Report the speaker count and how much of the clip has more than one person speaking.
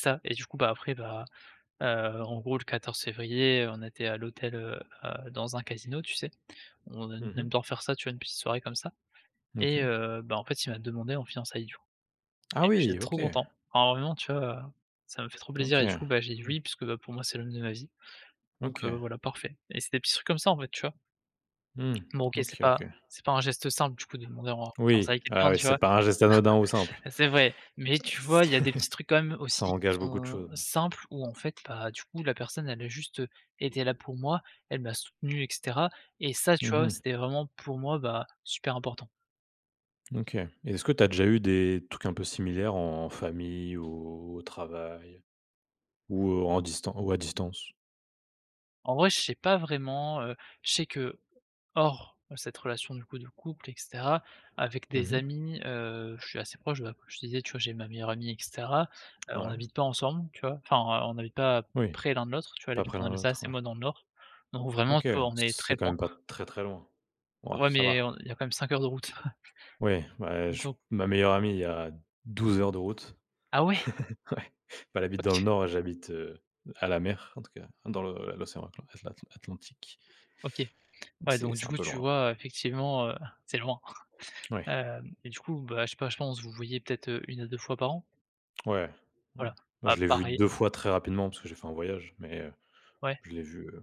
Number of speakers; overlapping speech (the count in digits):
2, about 11%